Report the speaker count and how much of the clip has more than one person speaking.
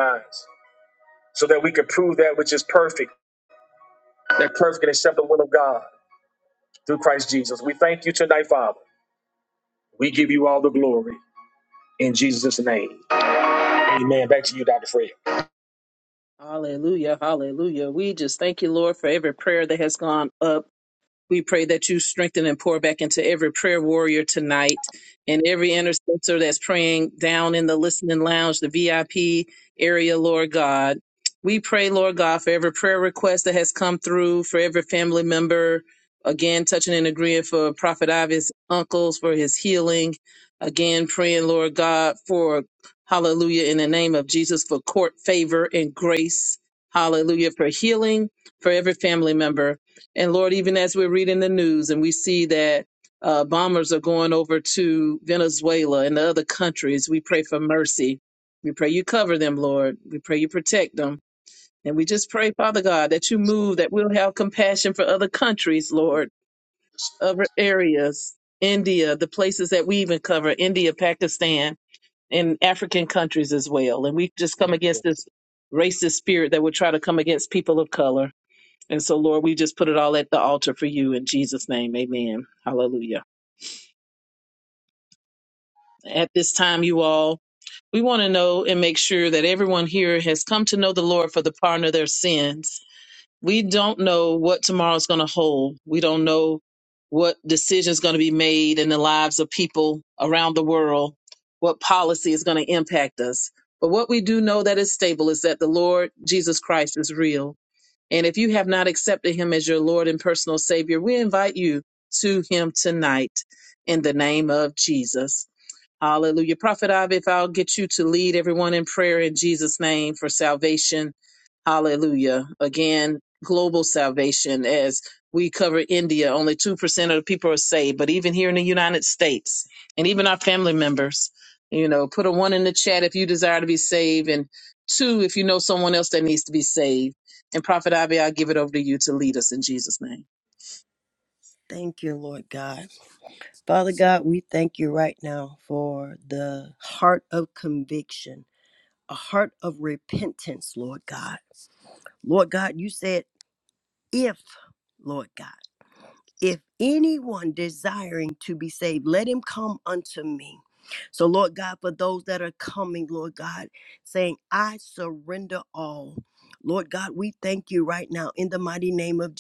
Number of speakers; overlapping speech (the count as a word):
three, no overlap